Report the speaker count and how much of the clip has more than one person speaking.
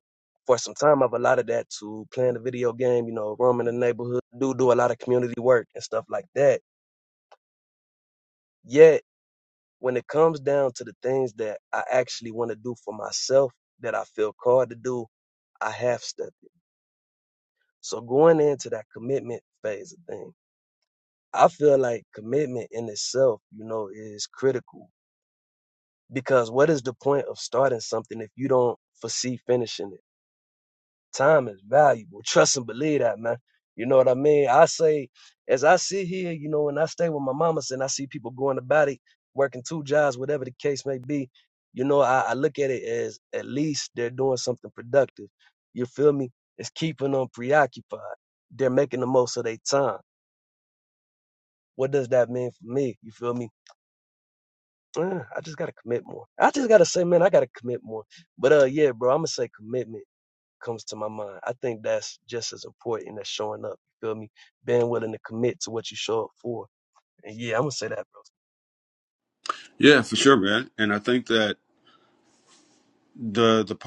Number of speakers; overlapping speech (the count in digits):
2, no overlap